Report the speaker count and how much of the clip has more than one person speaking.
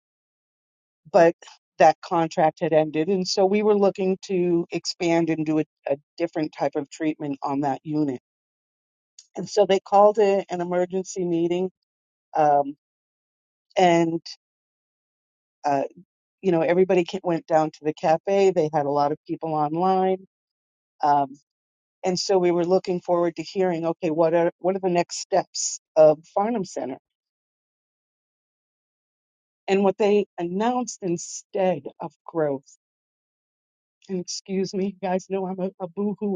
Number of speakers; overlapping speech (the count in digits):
1, no overlap